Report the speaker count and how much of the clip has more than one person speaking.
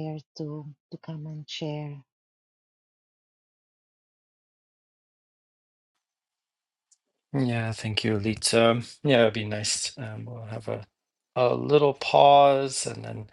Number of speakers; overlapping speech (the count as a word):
two, no overlap